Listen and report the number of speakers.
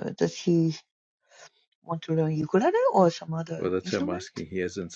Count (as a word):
two